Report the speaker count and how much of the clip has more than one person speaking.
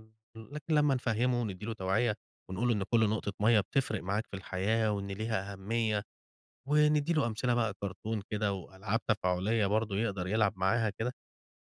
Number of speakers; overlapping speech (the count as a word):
one, no overlap